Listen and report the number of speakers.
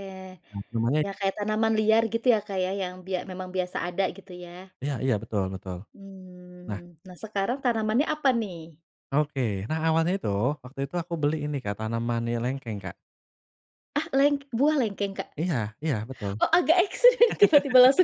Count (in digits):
2